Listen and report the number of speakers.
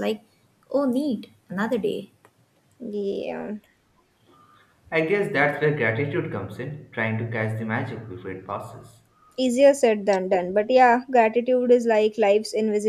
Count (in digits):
3